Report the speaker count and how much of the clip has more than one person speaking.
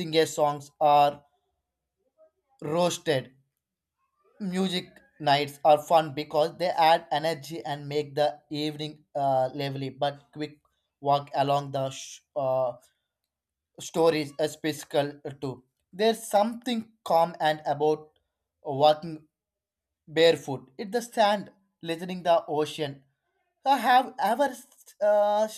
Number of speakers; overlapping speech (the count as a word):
one, no overlap